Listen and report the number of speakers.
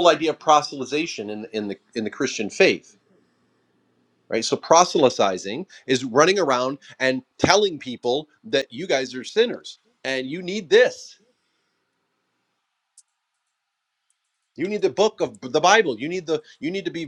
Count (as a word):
one